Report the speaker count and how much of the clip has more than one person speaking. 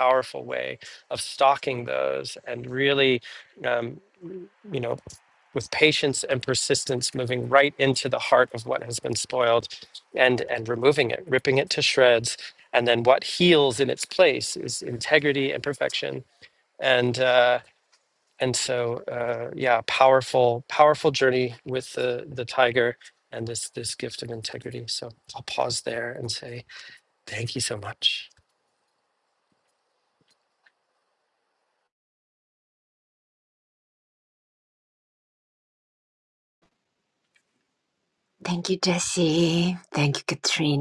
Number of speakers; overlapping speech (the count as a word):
two, no overlap